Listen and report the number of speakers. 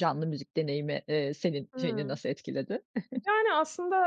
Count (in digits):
2